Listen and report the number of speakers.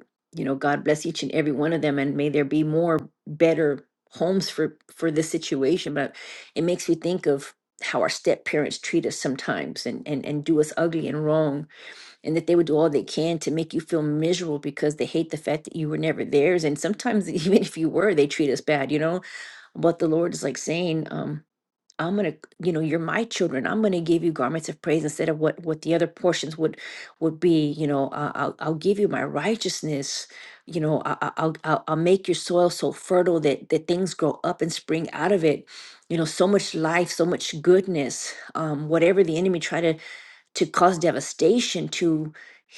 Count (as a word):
one